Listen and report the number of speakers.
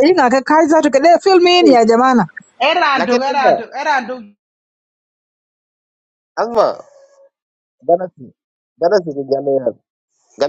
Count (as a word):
three